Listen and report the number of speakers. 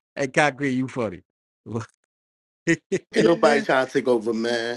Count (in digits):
2